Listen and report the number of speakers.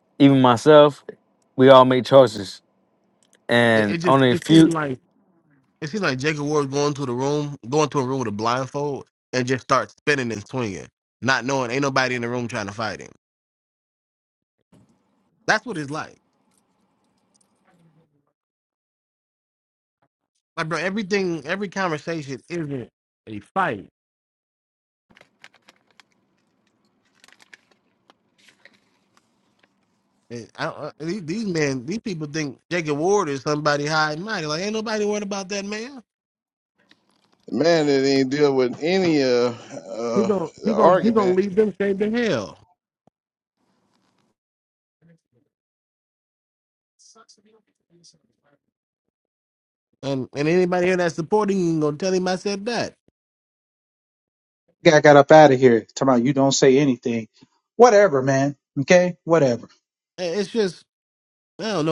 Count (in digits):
4